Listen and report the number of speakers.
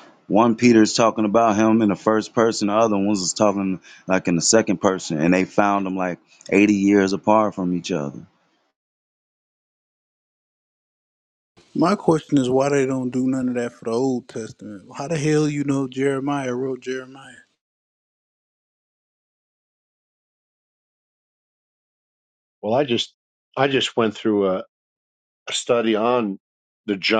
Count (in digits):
3